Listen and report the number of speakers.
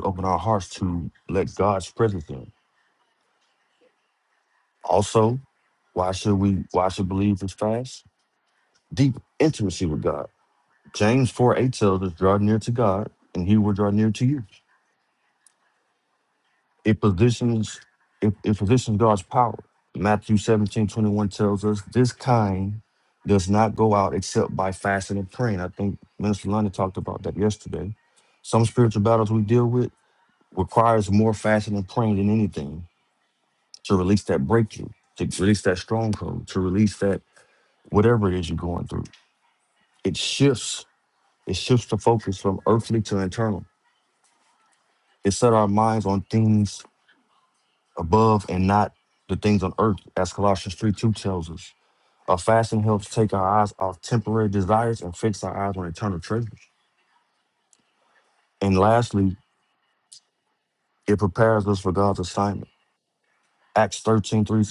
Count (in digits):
1